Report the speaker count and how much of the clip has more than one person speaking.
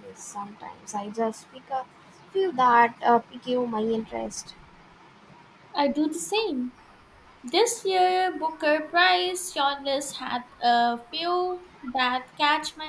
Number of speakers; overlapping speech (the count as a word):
two, no overlap